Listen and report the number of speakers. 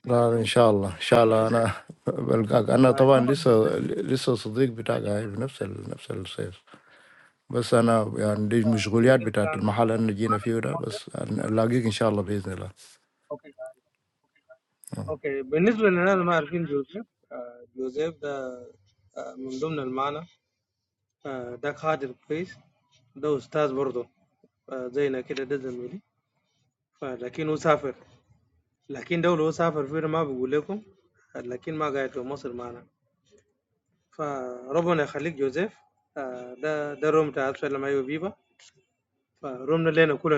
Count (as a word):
two